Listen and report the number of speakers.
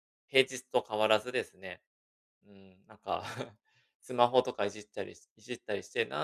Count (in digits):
1